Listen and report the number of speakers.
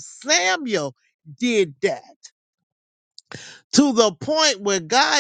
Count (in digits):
1